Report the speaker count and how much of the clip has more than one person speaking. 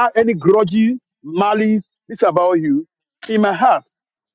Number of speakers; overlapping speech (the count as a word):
one, no overlap